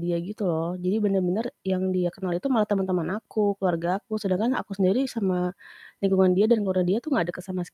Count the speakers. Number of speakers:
1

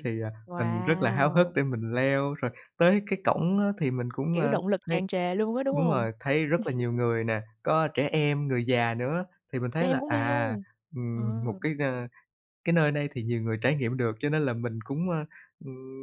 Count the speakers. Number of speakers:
2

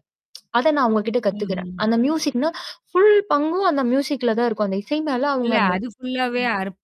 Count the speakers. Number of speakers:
2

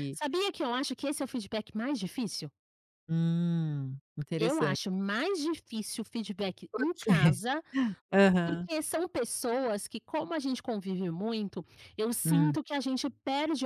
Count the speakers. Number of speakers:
2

